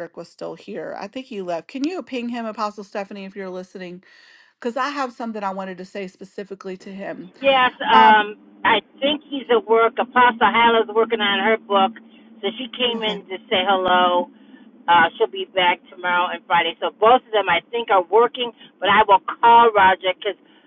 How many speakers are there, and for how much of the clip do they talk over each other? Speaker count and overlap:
2, about 3%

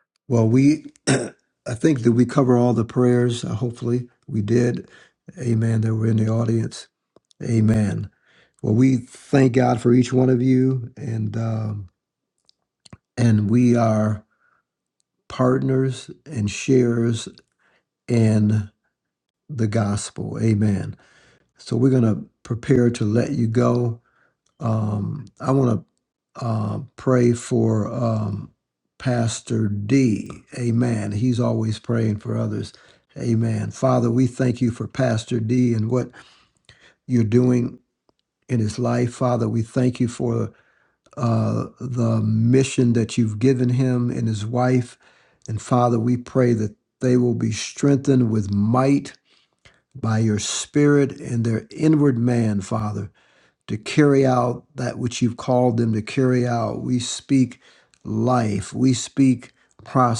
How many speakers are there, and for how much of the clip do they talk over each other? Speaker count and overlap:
1, no overlap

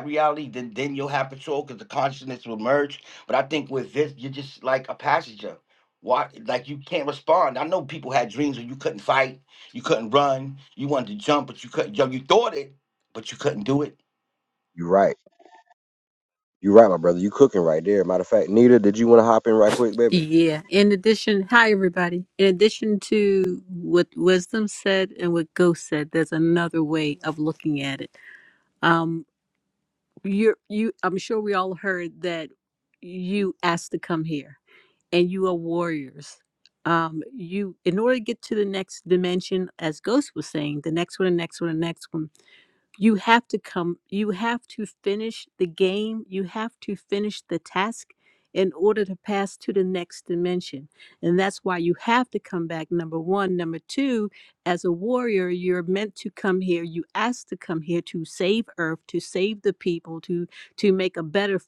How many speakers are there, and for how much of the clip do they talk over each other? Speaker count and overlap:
3, under 1%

